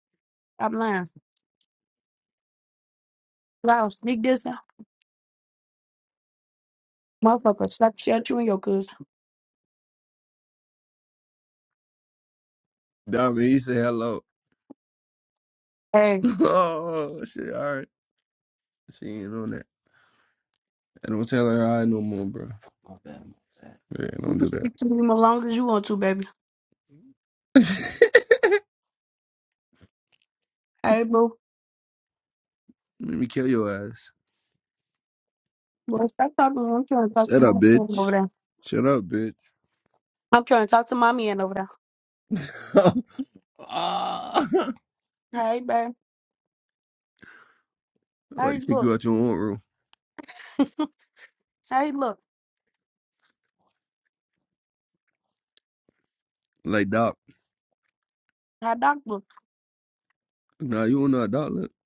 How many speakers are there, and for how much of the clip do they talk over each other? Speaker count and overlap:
two, about 3%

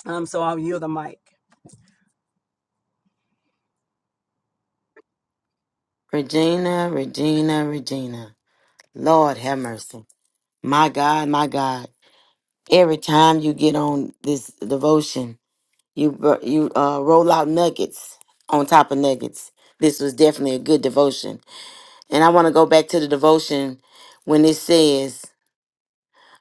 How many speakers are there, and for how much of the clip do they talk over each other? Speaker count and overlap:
two, no overlap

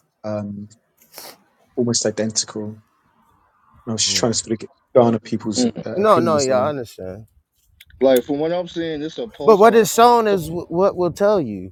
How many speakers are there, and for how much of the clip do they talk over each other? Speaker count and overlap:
three, about 15%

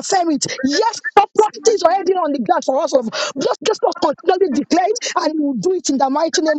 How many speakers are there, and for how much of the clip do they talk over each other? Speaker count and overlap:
one, no overlap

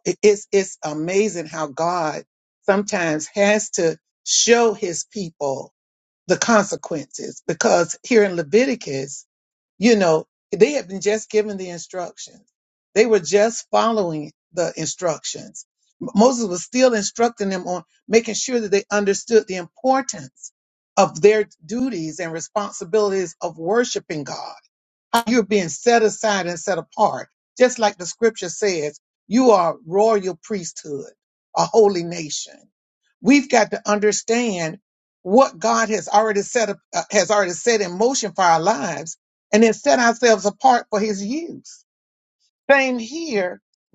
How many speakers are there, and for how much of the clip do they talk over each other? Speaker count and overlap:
one, no overlap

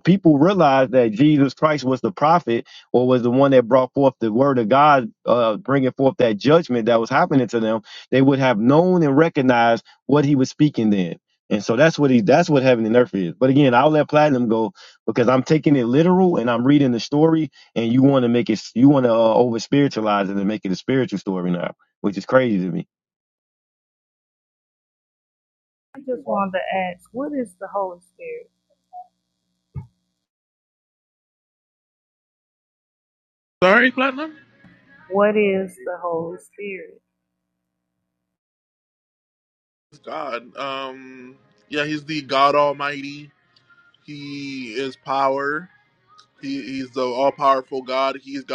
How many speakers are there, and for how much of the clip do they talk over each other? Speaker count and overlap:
three, no overlap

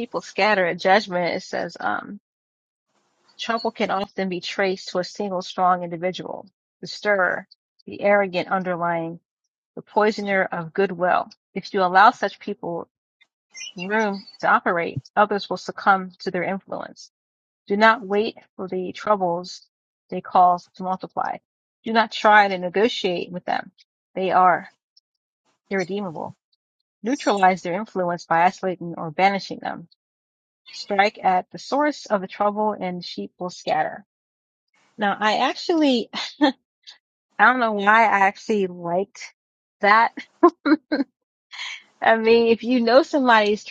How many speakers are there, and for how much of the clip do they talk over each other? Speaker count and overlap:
one, no overlap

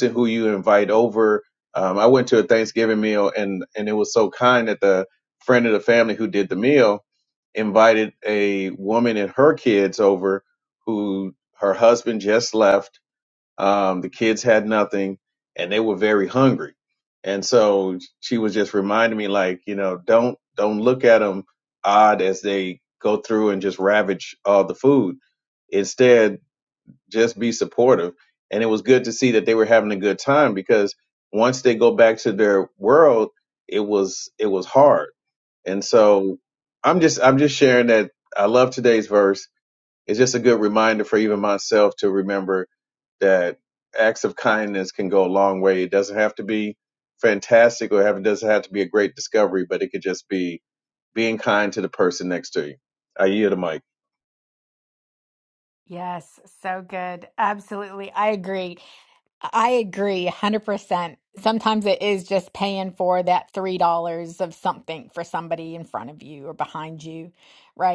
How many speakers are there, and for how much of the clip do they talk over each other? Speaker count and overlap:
two, no overlap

